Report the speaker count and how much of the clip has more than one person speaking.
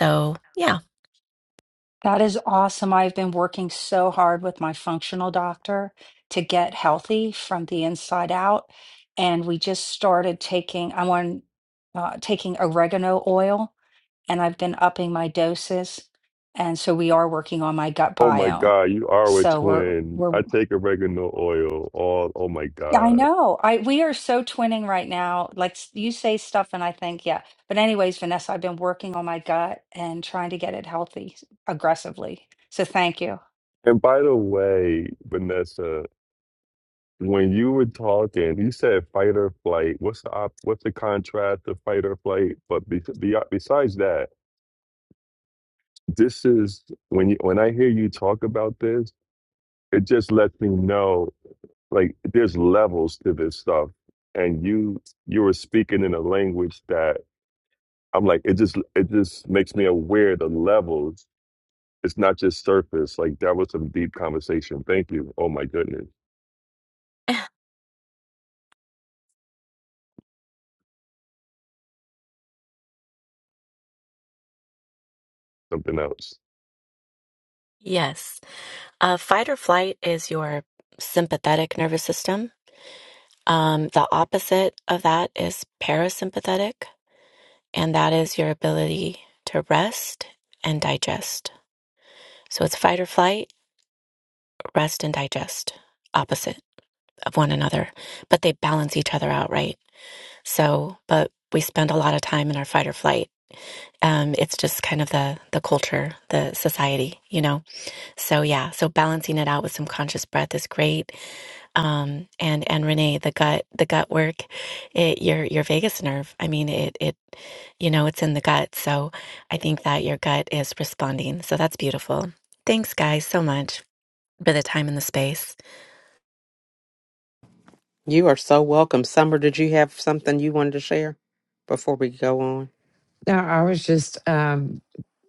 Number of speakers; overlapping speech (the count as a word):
five, about 1%